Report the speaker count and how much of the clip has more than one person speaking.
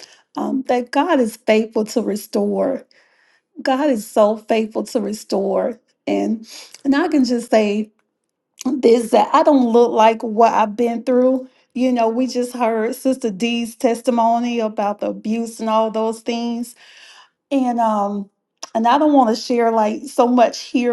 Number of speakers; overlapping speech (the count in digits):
1, no overlap